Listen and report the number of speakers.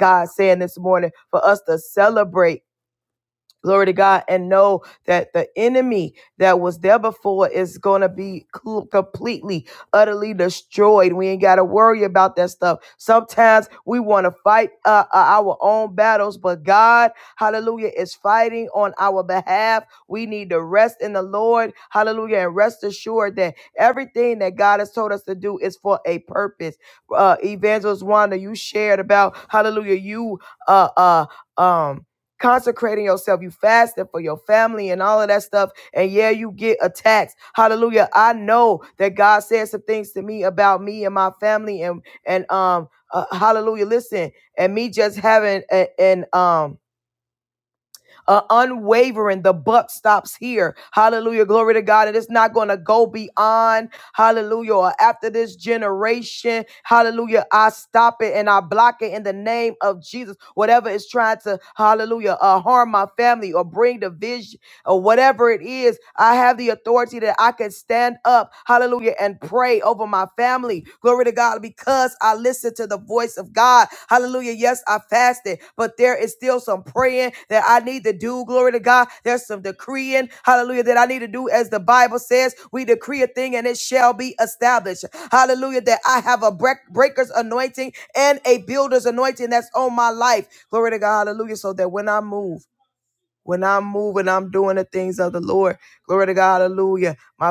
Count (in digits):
1